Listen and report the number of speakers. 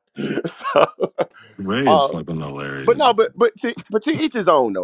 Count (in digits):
2